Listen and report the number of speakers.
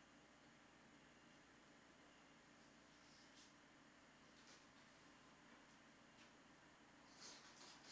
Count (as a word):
zero